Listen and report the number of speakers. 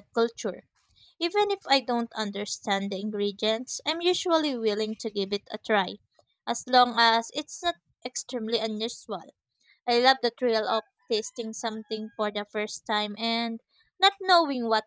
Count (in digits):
1